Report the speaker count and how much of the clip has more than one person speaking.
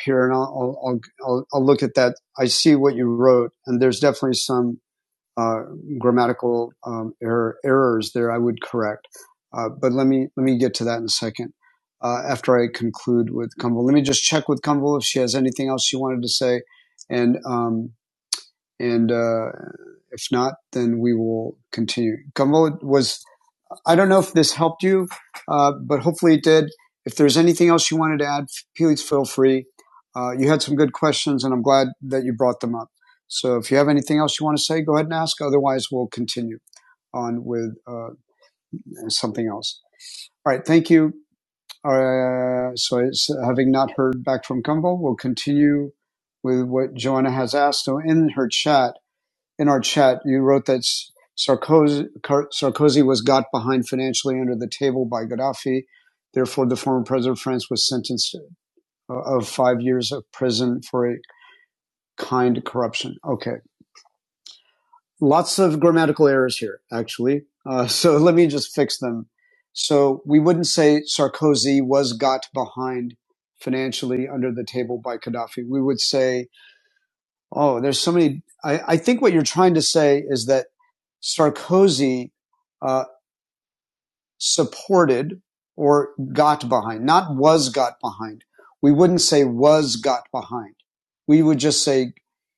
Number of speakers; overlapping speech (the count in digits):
1, no overlap